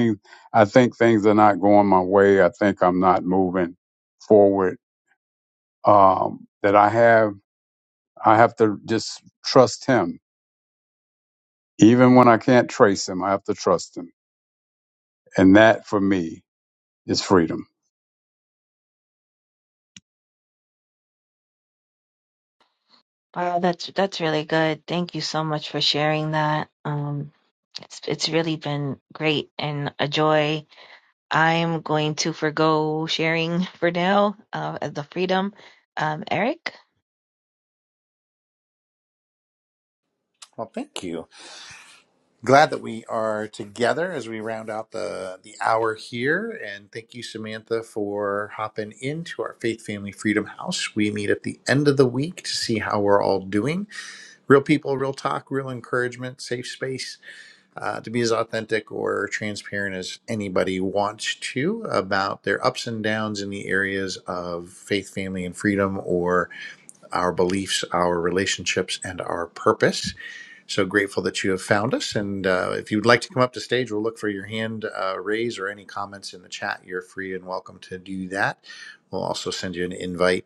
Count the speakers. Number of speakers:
three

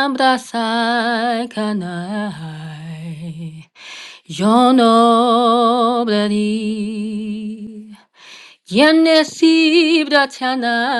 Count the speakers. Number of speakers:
one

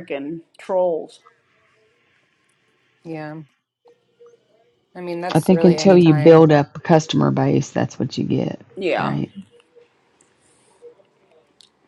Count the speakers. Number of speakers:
three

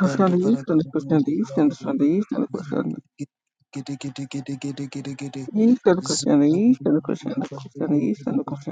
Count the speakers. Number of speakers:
two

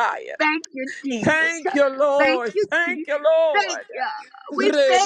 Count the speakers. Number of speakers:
two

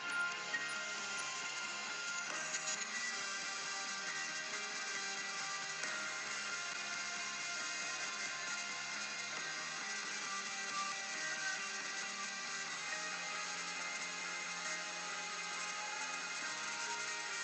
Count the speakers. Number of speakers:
zero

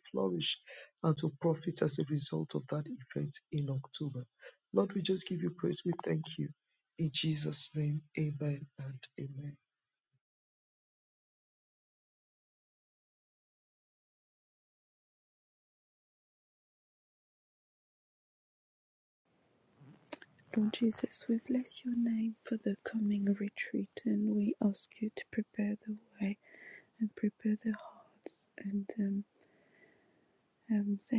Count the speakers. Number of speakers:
two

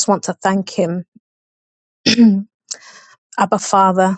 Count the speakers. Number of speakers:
one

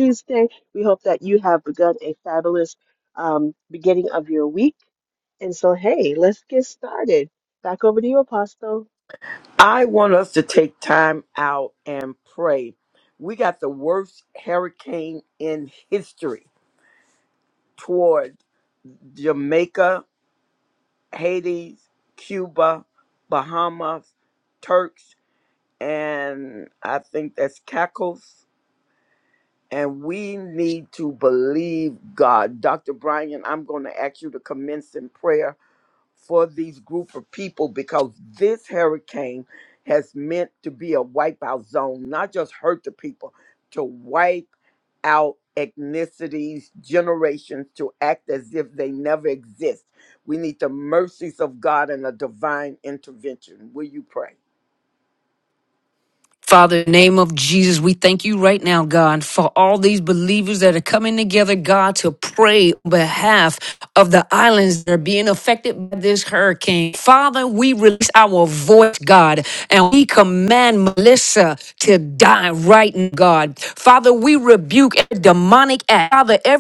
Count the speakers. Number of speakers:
three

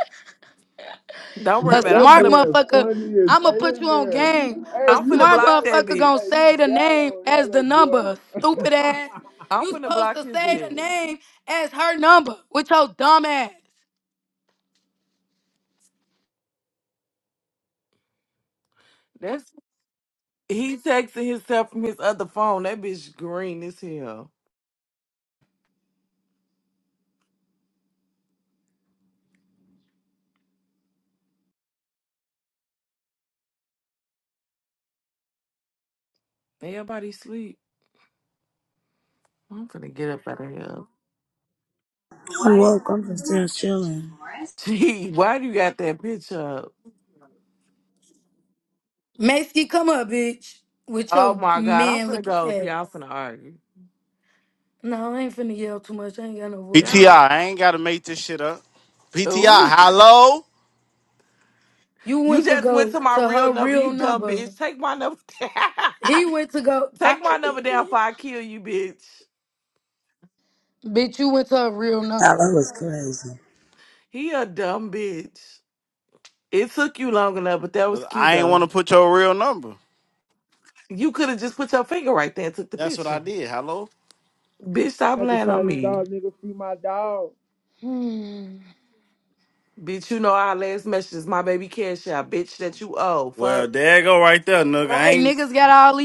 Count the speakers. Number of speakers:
five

